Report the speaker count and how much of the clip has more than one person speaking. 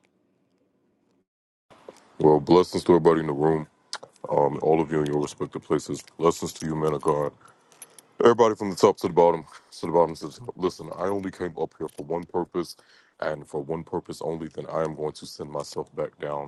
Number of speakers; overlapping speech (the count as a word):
one, no overlap